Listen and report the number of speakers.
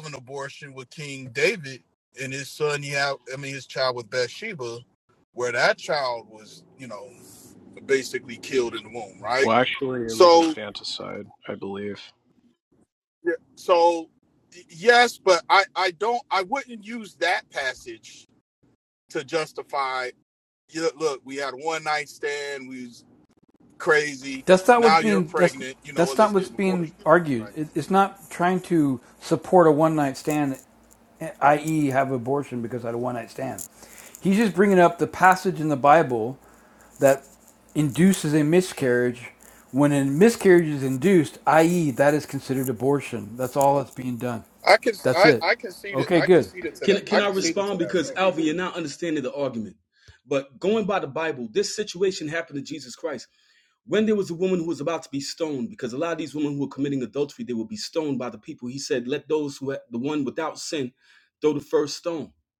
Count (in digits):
4